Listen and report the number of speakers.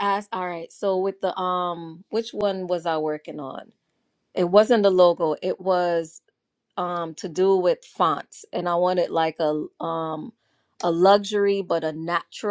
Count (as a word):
one